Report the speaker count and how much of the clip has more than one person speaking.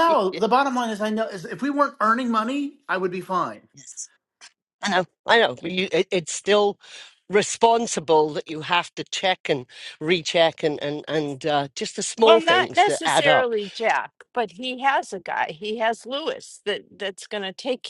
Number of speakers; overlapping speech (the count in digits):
3, about 7%